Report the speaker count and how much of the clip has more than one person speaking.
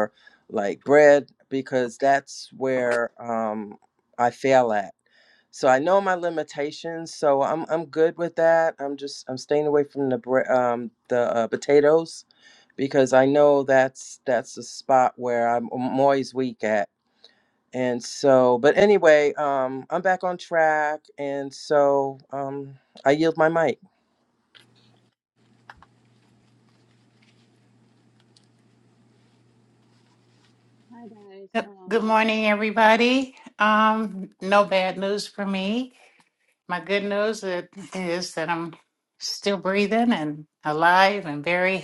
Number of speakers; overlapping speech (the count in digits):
3, about 1%